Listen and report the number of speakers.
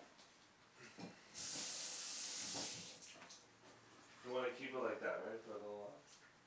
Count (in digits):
1